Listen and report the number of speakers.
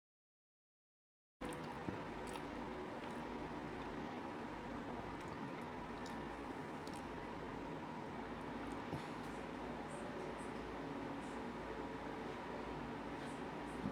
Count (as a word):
zero